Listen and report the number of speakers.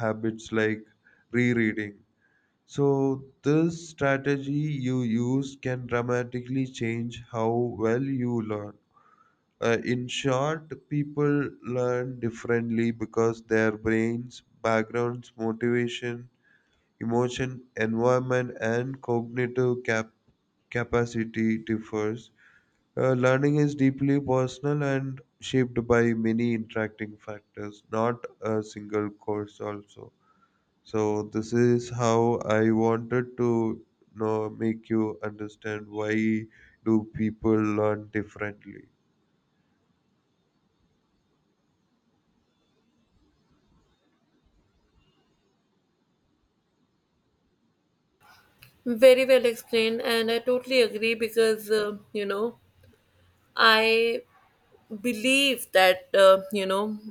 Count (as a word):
two